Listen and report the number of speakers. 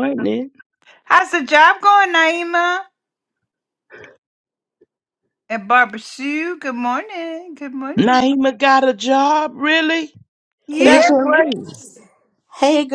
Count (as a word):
three